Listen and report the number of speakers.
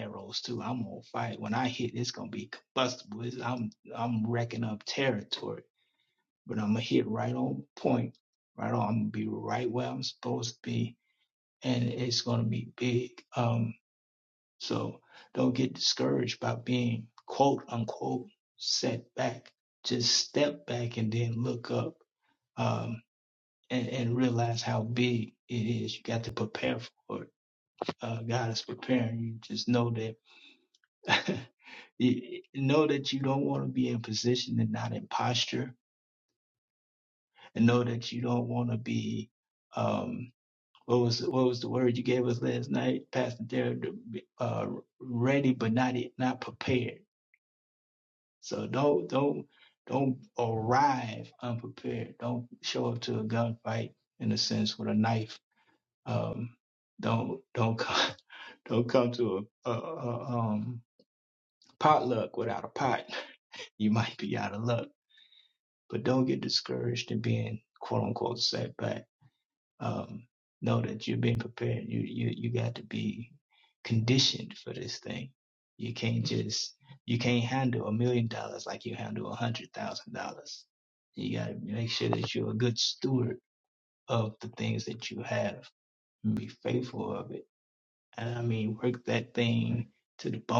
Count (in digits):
1